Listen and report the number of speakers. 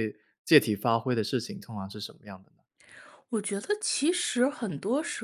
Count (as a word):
two